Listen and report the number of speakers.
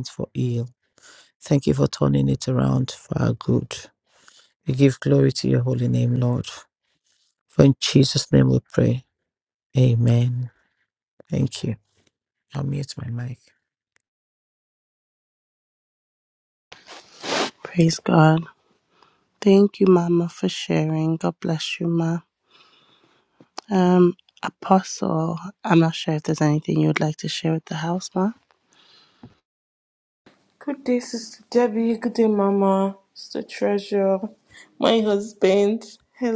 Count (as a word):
three